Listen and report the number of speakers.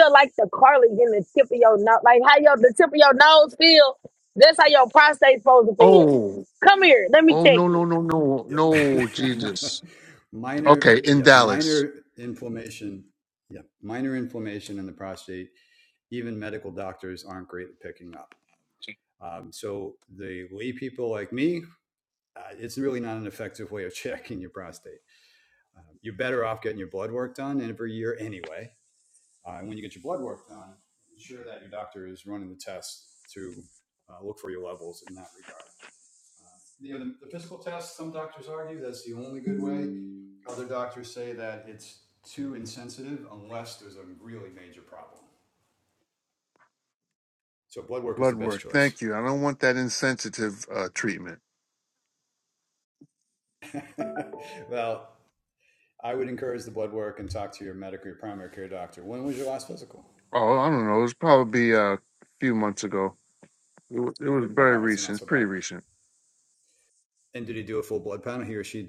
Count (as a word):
three